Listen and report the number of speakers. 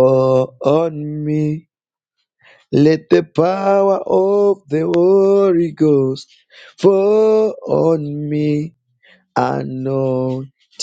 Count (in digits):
1